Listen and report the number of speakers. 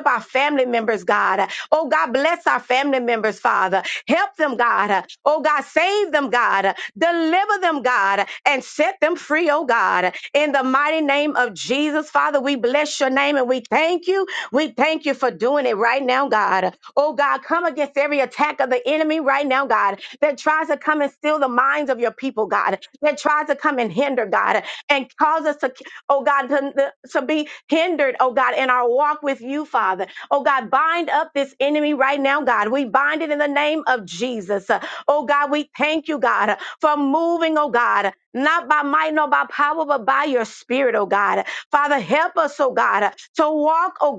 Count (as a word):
one